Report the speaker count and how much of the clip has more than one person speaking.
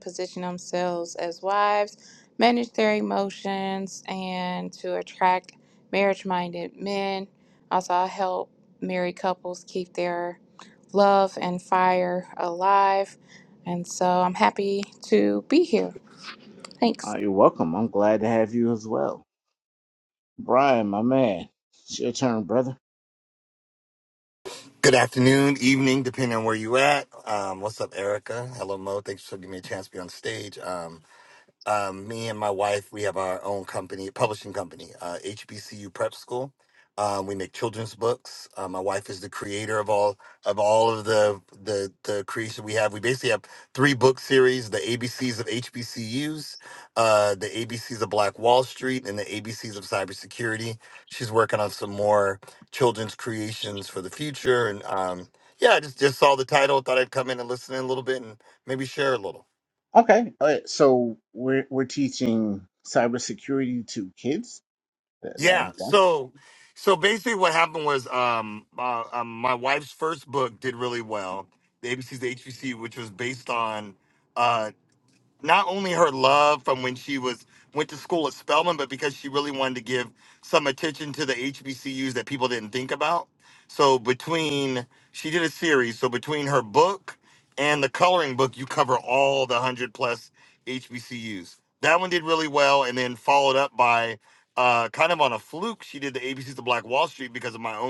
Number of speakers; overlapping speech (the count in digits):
3, under 1%